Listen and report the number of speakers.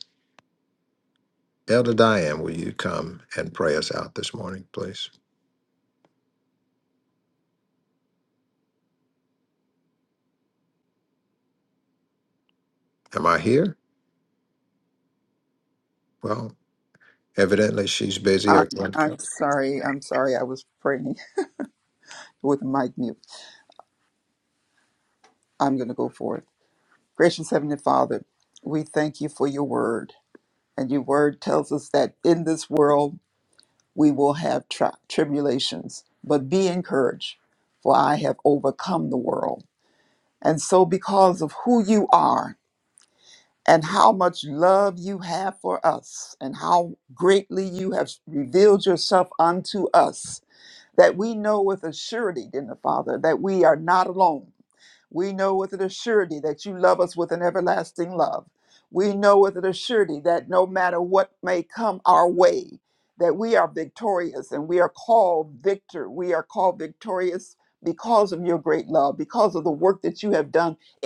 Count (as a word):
two